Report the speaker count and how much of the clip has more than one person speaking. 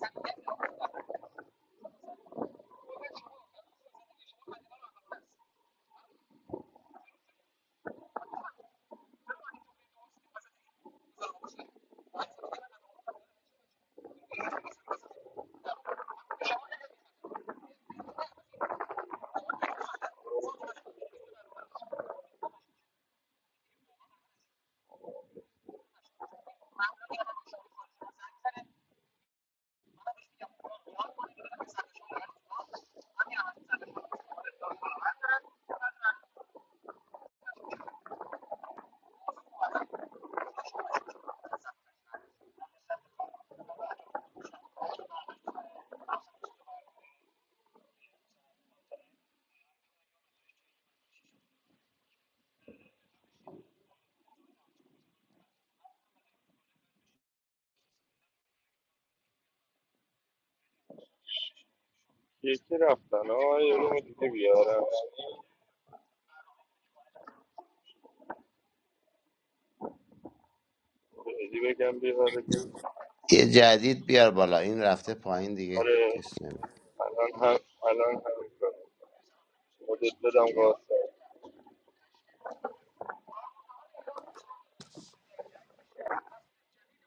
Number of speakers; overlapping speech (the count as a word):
two, under 1%